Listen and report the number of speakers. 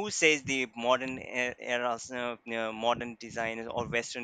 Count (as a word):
one